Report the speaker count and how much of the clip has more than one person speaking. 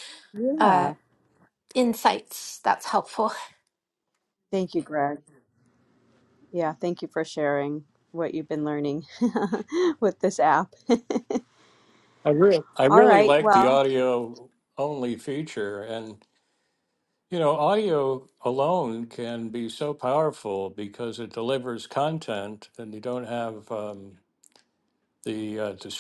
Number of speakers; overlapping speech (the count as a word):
three, about 5%